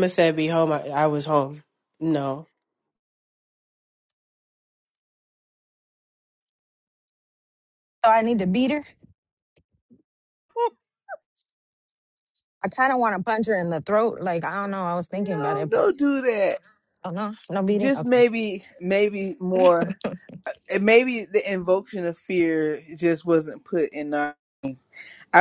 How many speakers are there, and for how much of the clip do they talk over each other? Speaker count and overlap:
three, about 4%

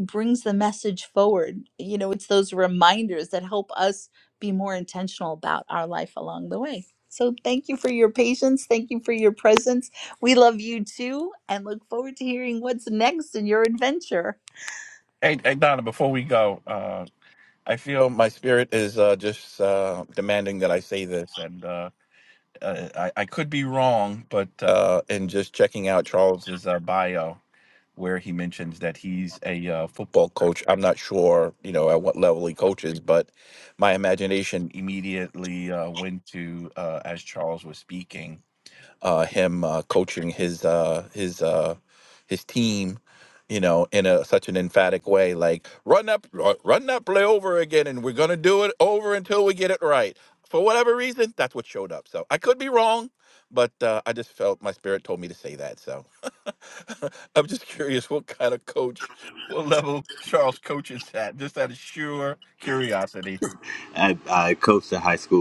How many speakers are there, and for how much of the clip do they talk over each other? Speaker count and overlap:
three, no overlap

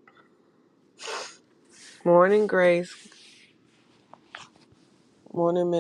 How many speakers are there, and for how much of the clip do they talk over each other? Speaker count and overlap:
one, no overlap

